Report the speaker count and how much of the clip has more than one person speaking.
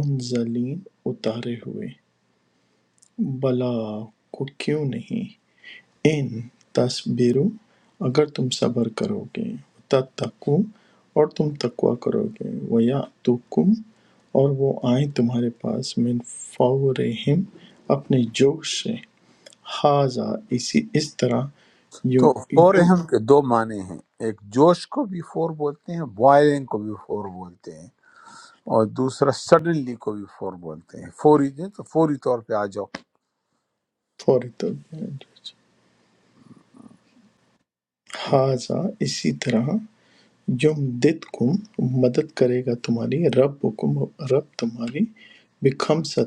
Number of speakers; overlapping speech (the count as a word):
two, about 2%